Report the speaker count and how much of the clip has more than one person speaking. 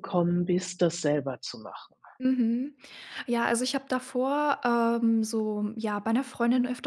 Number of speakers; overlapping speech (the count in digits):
2, no overlap